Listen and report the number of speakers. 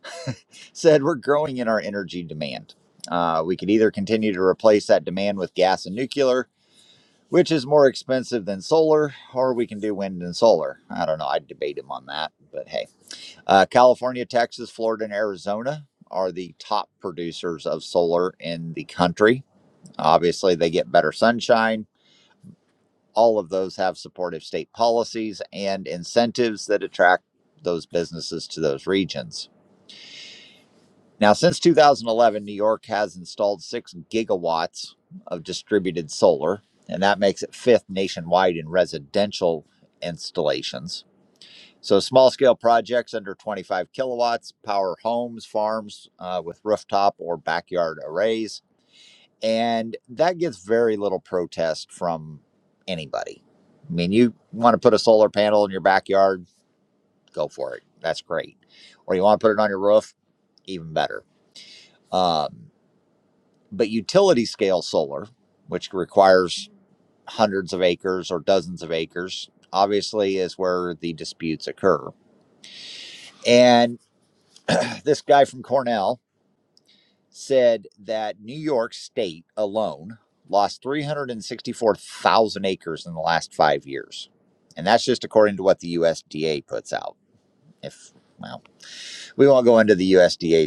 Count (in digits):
1